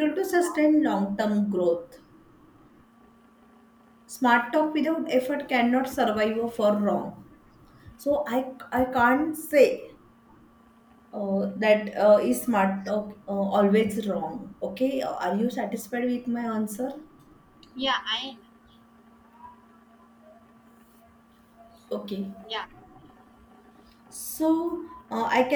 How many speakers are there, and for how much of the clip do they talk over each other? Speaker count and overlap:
2, about 1%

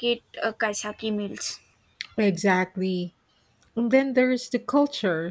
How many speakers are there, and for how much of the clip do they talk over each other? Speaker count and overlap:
2, no overlap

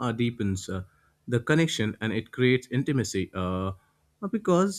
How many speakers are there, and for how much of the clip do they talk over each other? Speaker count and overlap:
1, no overlap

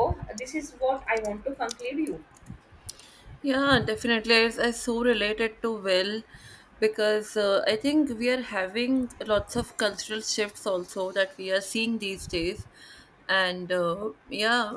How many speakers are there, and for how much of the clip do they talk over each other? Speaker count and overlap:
2, no overlap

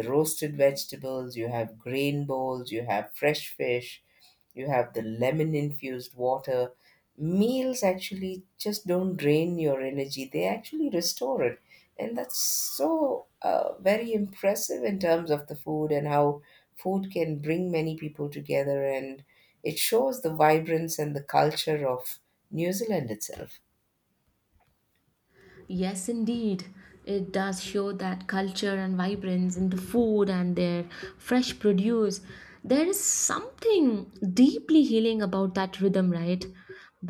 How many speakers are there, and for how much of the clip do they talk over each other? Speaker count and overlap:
2, no overlap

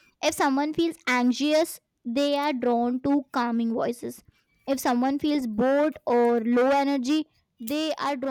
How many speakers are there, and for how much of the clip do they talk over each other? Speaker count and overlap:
1, no overlap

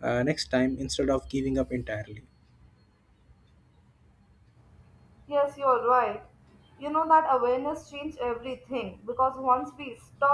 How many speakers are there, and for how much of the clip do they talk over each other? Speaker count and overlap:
2, no overlap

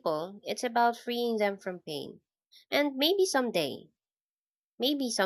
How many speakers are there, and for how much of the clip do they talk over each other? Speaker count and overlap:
1, no overlap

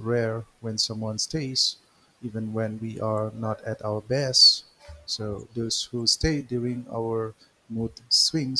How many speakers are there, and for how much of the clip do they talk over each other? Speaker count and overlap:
1, no overlap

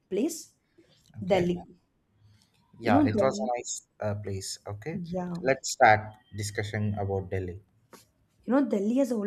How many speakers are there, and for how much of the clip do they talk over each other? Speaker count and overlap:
2, about 10%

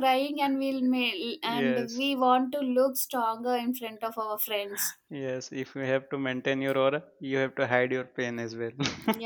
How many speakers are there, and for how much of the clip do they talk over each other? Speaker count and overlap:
2, about 5%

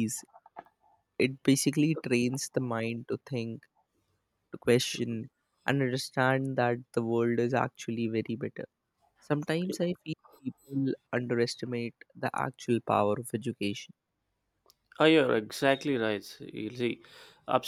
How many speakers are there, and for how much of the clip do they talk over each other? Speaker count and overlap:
2, no overlap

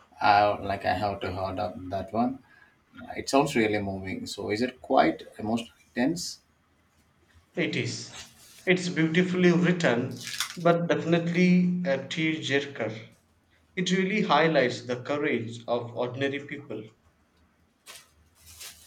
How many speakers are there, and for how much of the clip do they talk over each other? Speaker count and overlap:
2, no overlap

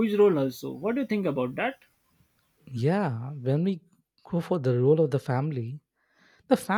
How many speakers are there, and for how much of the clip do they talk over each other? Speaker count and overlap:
2, no overlap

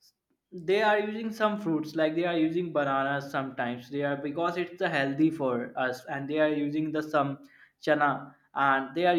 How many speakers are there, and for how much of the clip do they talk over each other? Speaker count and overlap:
1, no overlap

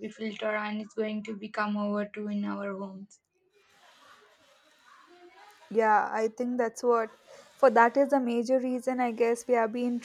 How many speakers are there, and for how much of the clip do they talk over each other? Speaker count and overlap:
2, no overlap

